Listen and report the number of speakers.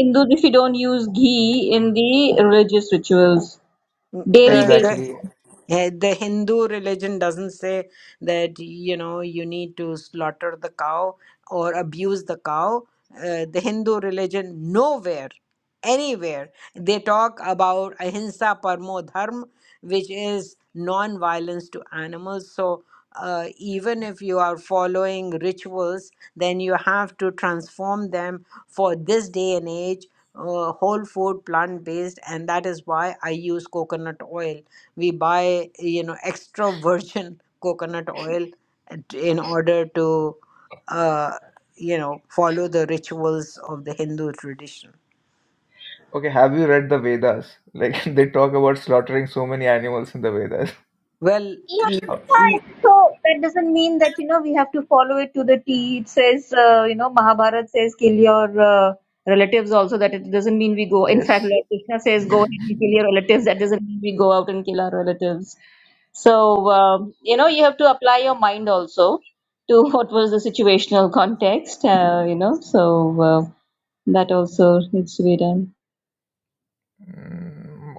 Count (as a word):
three